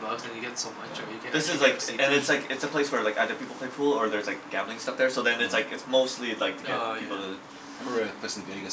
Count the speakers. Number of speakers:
3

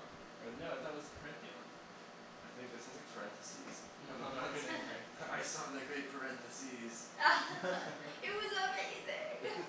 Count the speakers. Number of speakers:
3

